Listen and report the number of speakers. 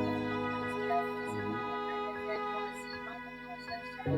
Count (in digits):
0